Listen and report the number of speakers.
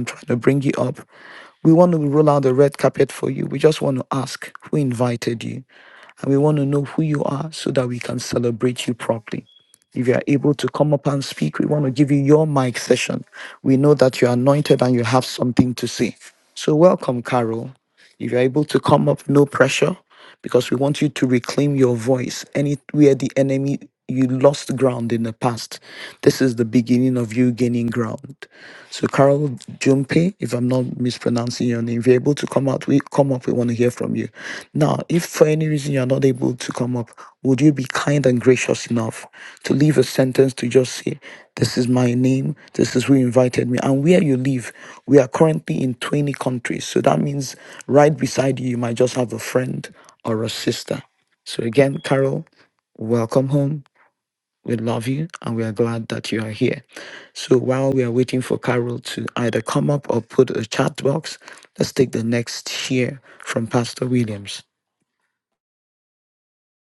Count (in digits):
1